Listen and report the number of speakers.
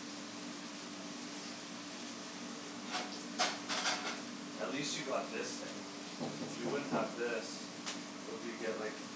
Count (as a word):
one